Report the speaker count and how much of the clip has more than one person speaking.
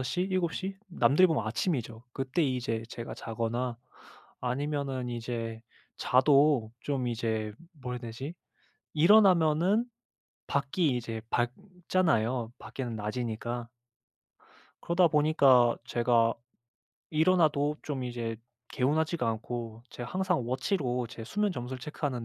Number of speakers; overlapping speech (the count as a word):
one, no overlap